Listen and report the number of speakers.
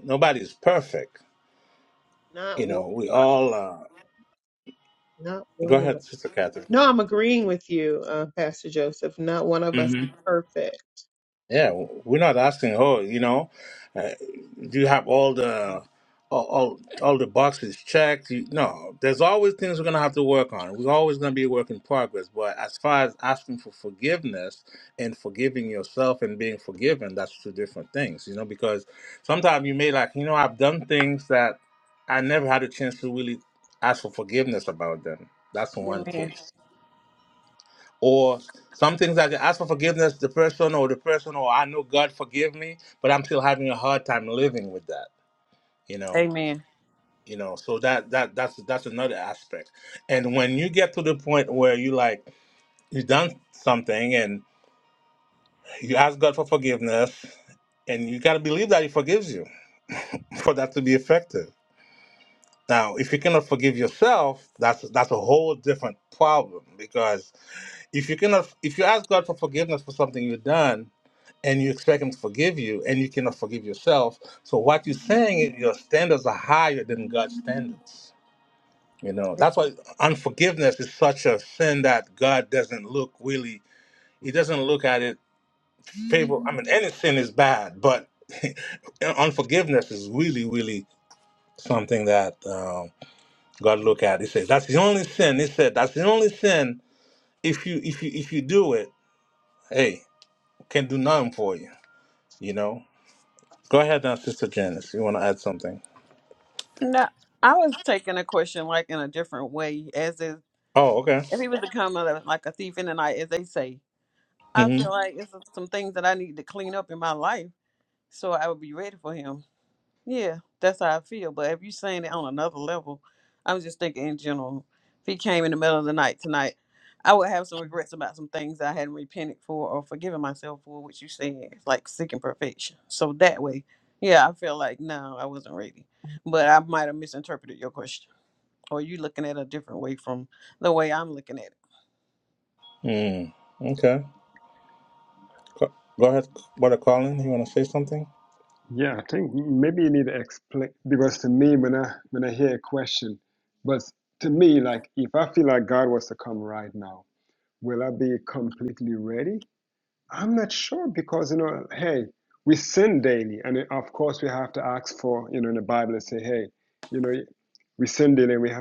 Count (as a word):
four